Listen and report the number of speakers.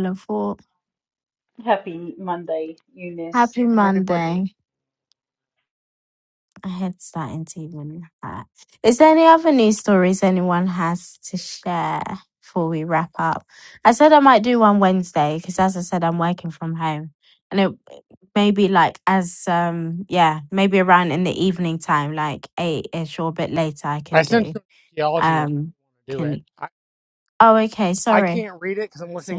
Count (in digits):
3